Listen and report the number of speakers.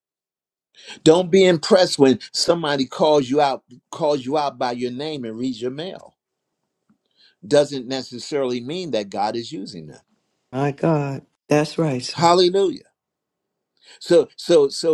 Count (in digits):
2